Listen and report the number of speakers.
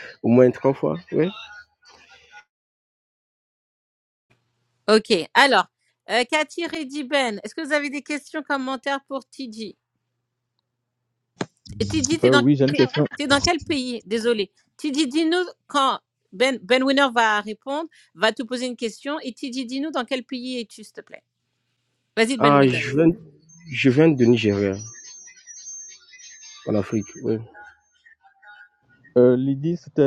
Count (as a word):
three